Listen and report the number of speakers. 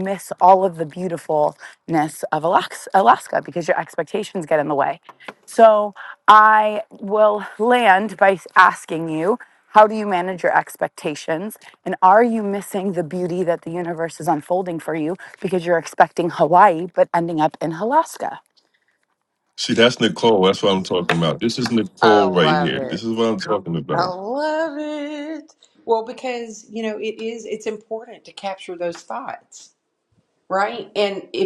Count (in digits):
3